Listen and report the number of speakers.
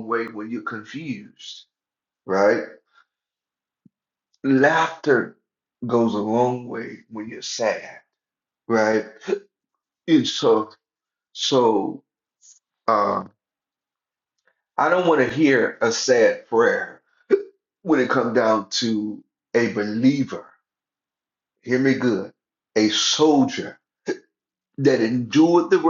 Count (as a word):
one